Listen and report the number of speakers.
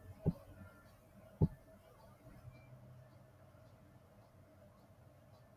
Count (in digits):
0